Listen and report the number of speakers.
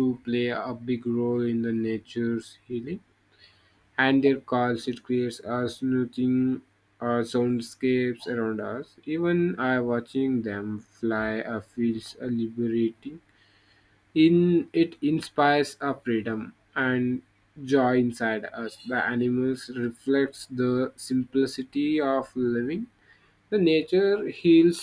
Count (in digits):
1